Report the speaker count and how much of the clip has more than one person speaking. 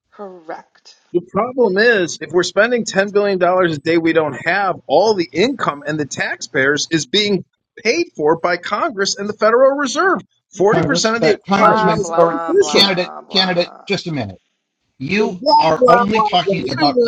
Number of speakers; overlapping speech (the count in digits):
3, about 29%